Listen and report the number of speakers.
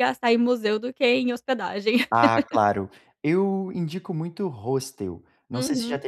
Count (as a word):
two